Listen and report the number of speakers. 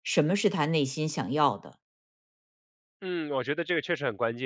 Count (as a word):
two